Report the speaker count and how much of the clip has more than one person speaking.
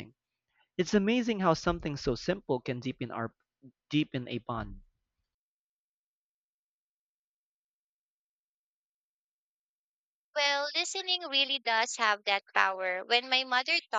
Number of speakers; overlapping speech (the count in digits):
2, no overlap